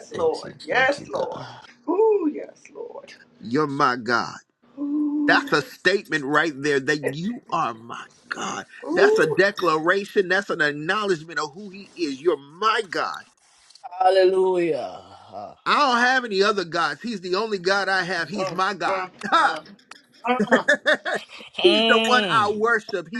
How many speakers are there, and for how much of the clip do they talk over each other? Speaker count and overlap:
three, about 15%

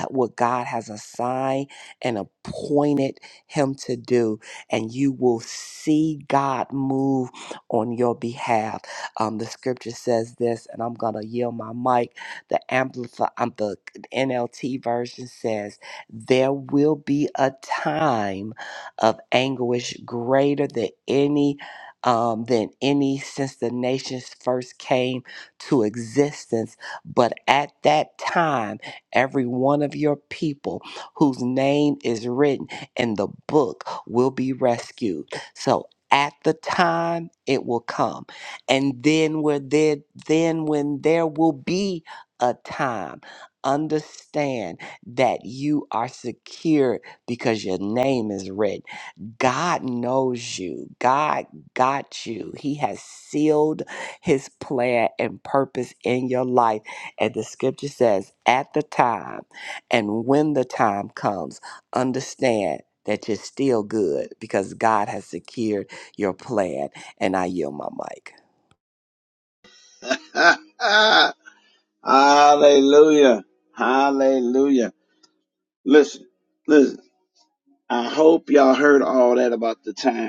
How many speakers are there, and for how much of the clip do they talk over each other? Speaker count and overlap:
two, no overlap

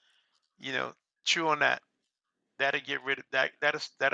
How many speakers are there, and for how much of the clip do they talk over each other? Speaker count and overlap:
one, no overlap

